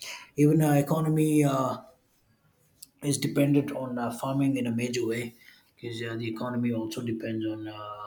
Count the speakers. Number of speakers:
1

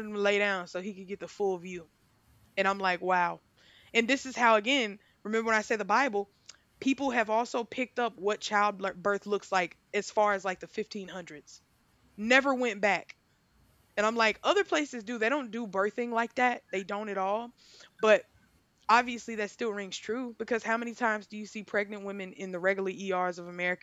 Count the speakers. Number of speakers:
1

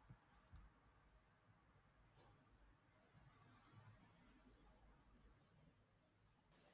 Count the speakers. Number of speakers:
0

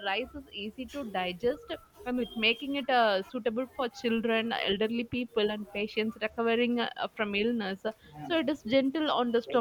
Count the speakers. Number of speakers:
1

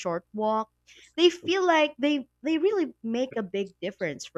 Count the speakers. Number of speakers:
1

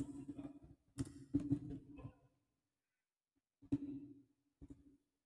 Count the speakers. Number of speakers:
0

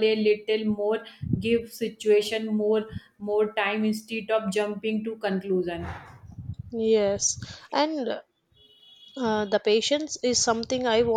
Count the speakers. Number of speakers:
2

